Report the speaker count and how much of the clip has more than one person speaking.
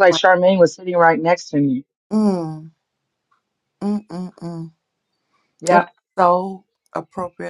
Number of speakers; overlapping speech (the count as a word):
two, about 4%